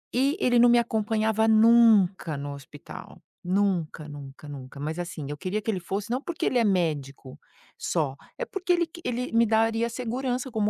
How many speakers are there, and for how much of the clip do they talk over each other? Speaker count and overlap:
1, no overlap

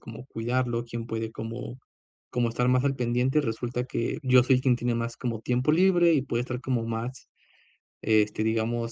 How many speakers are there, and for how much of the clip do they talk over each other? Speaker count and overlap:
1, no overlap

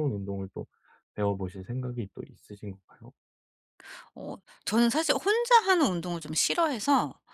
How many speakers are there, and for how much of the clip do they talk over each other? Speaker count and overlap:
2, no overlap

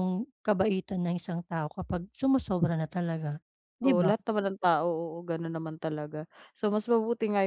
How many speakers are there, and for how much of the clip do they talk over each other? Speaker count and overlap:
2, about 4%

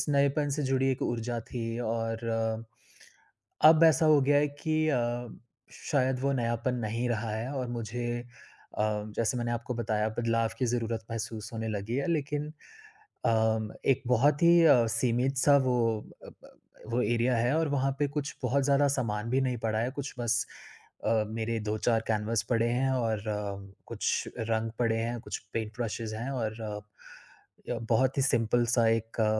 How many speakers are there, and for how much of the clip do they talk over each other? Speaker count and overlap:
1, no overlap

